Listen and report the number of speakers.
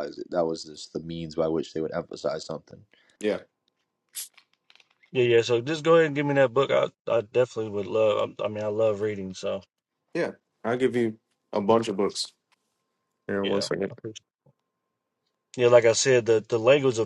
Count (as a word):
three